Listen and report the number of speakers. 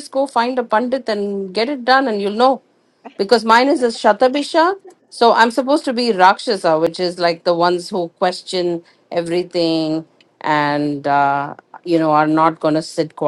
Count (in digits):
1